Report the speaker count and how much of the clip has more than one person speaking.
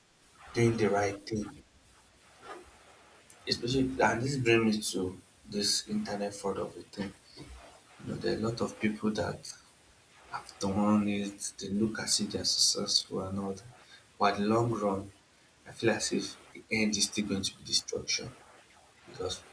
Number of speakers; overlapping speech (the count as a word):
one, no overlap